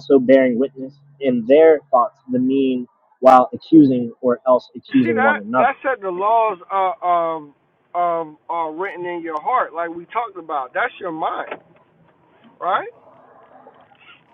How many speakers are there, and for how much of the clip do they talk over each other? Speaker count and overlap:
two, about 5%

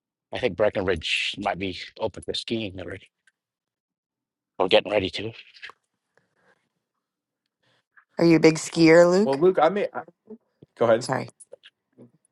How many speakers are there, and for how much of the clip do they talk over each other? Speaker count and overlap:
three, about 1%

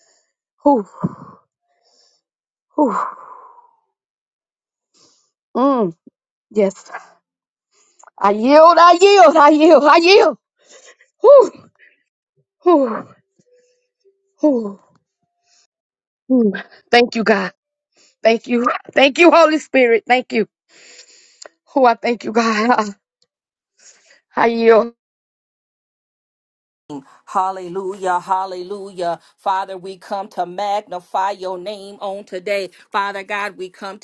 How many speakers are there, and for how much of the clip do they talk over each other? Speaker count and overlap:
two, no overlap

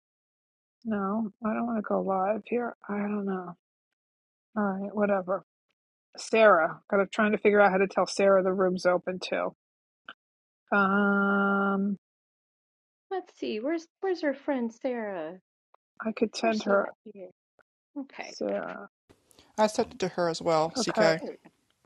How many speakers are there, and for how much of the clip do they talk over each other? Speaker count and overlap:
three, about 4%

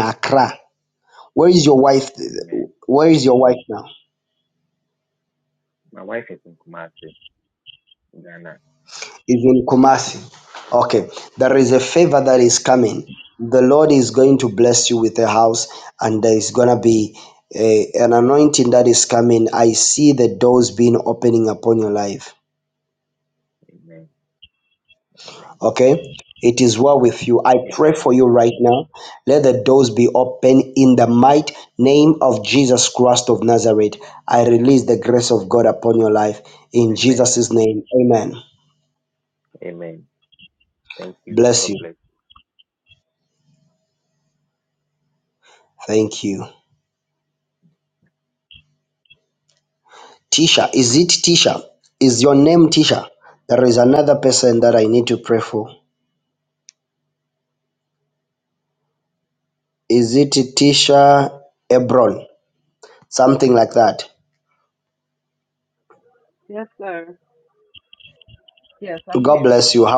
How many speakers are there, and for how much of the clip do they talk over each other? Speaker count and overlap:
three, about 3%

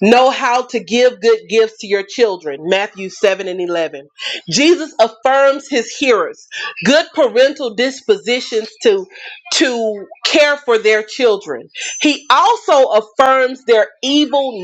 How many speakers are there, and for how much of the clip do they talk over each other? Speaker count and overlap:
one, no overlap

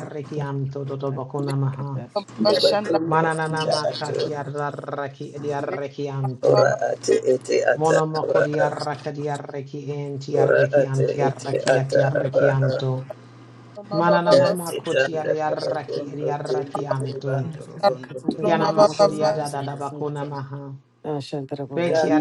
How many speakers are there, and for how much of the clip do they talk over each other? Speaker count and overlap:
three, about 52%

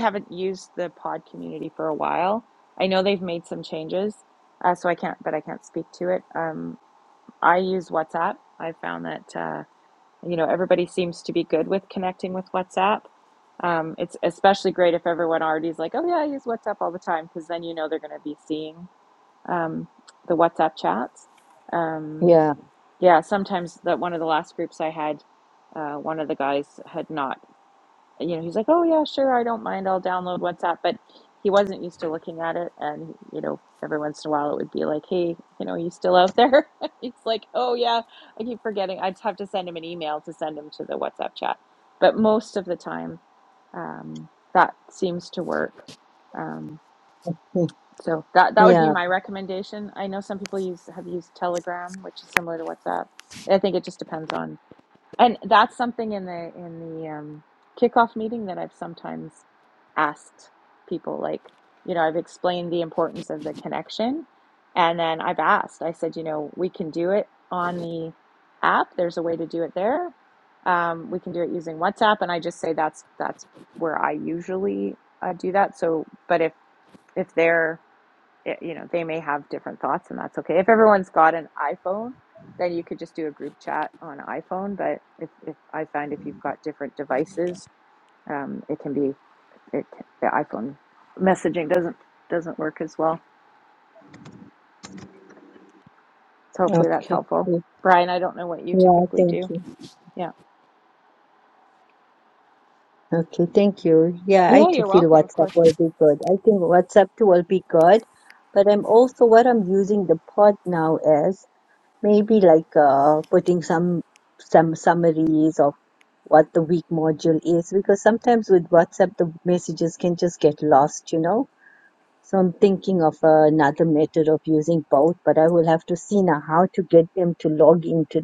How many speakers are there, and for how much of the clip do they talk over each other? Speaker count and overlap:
two, about 2%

